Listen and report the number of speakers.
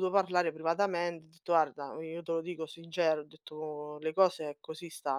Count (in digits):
1